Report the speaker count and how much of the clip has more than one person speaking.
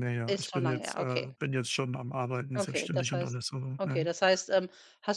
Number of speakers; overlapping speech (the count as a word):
two, about 38%